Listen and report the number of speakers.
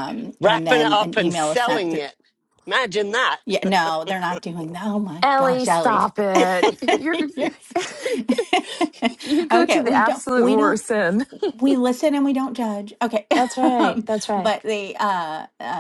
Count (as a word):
three